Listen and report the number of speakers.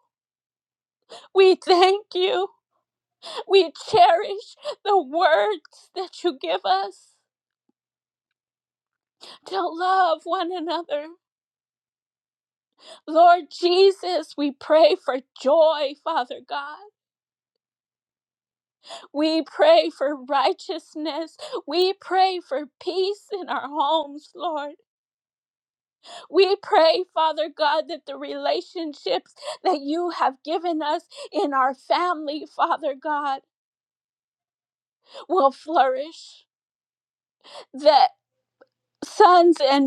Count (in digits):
1